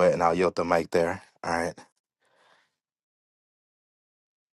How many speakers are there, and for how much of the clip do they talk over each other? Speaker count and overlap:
1, no overlap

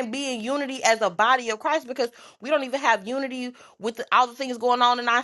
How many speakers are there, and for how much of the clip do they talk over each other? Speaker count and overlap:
1, no overlap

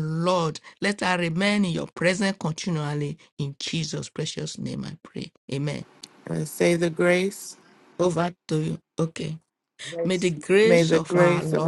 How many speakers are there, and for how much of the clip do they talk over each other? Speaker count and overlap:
2, about 9%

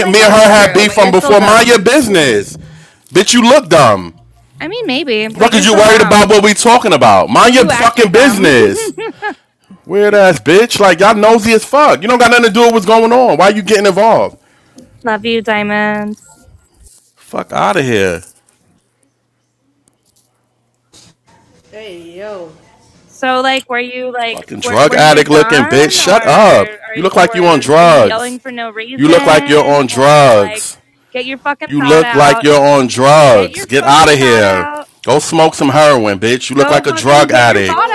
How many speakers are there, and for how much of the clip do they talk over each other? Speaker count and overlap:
3, about 31%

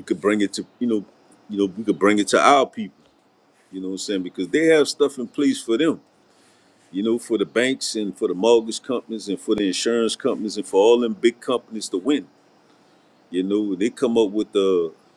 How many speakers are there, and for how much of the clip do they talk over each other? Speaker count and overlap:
1, no overlap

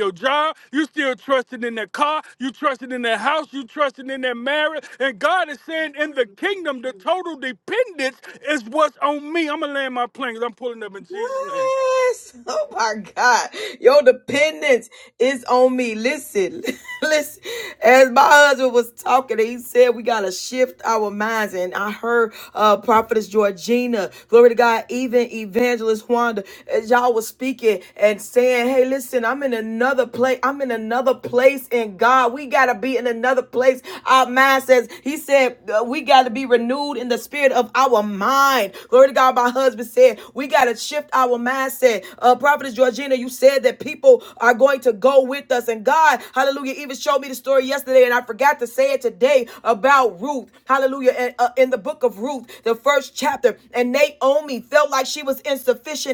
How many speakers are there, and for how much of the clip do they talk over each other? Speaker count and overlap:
2, about 1%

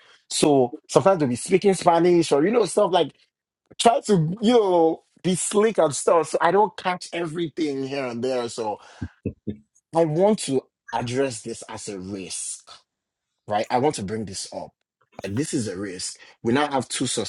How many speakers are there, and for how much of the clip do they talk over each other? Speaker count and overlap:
1, no overlap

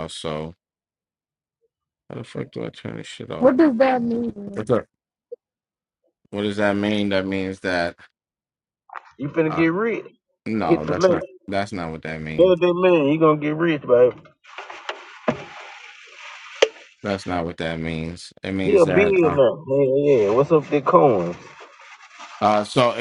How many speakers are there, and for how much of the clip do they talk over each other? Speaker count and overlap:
3, about 8%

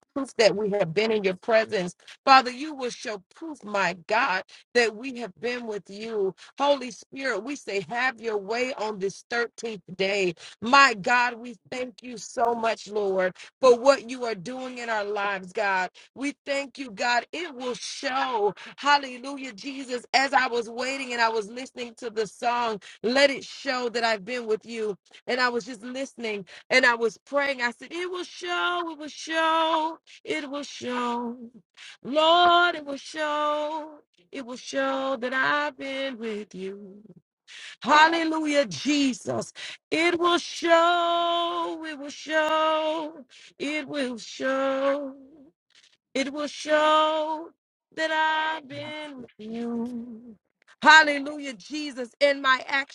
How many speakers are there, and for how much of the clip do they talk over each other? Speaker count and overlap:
1, no overlap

